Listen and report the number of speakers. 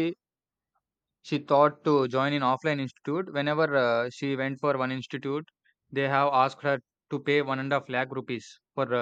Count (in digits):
1